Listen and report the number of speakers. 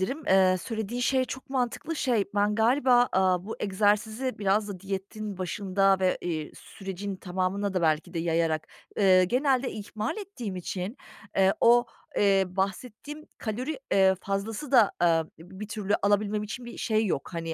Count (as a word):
one